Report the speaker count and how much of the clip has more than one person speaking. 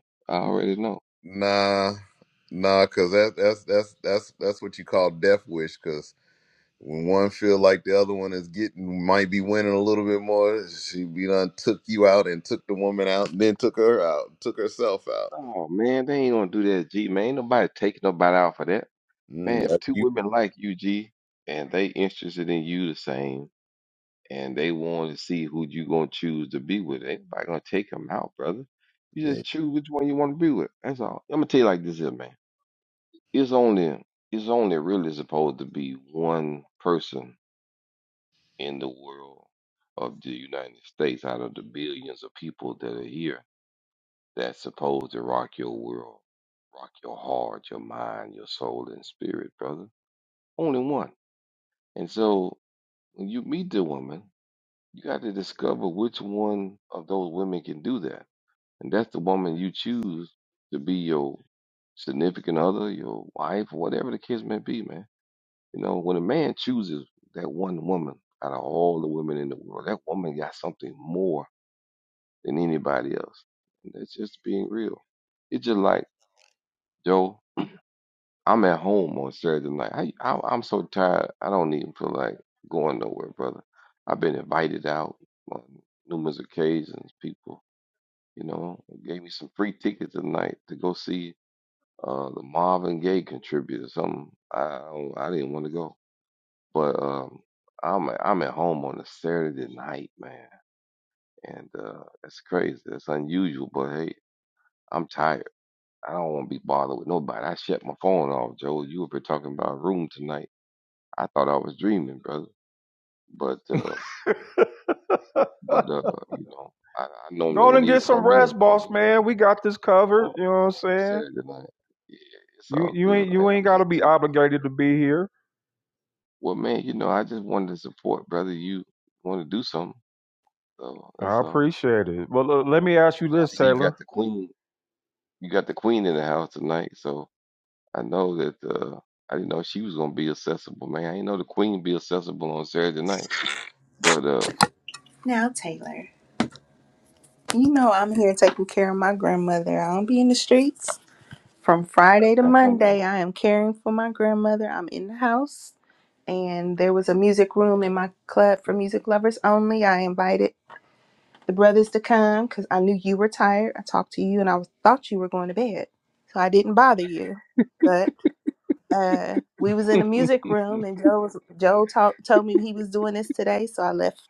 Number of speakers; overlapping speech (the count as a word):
four, about 3%